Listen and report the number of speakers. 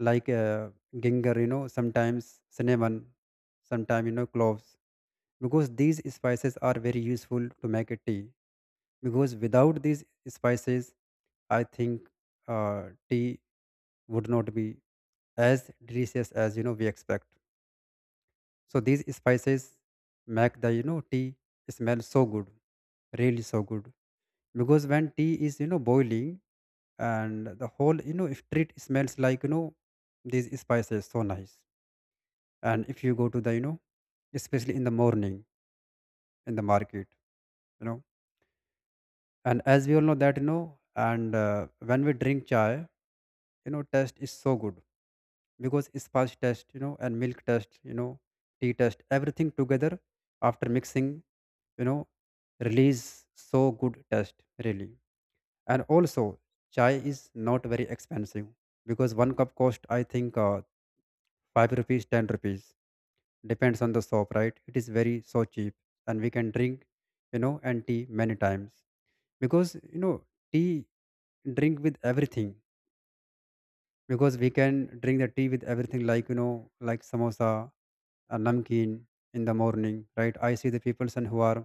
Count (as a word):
one